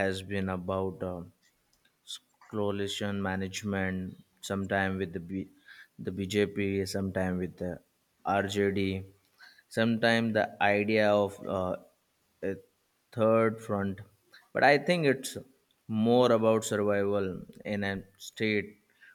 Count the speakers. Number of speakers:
one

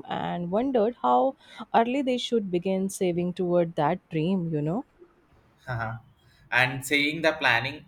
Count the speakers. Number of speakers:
two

